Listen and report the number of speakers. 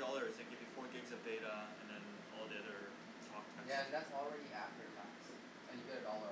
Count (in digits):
2